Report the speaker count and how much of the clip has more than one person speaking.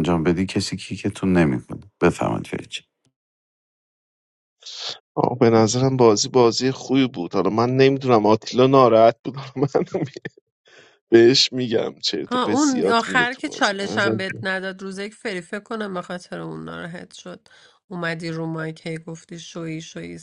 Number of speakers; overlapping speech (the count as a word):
three, about 10%